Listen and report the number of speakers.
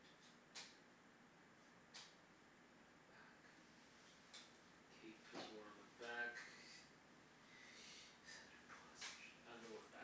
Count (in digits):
1